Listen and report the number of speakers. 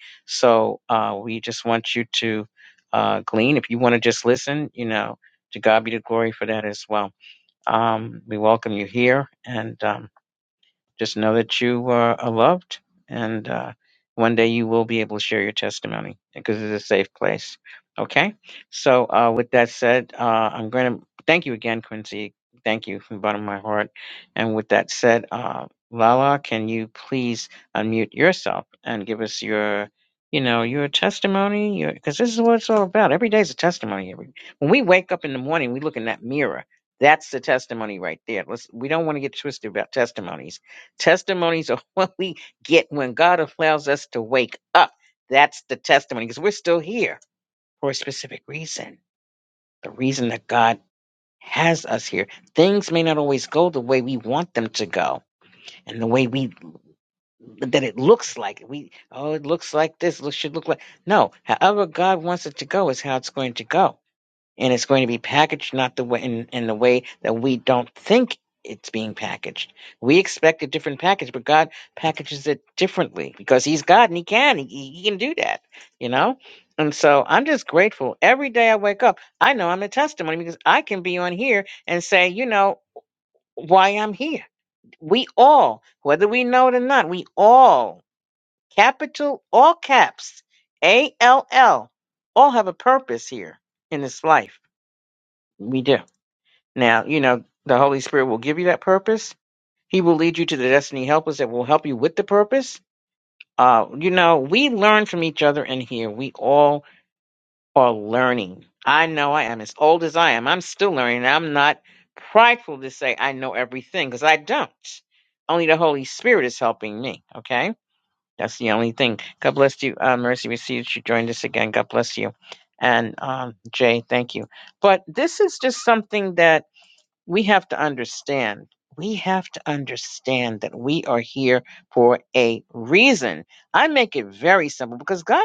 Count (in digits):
1